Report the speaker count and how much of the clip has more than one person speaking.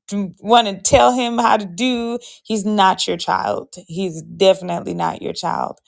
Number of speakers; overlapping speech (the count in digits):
1, no overlap